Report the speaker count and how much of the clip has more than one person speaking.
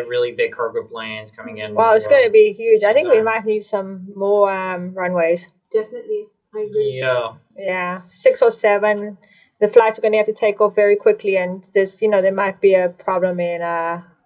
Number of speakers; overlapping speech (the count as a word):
three, about 10%